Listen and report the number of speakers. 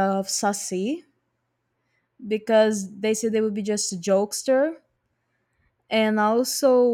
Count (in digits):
1